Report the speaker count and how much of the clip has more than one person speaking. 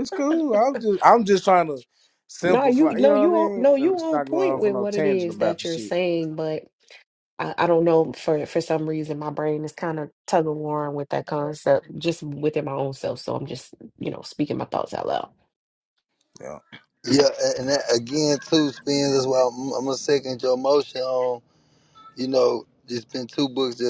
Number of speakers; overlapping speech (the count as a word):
three, about 14%